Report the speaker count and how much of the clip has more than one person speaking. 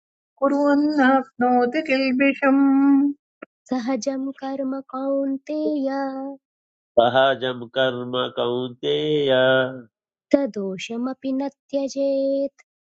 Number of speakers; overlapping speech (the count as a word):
three, no overlap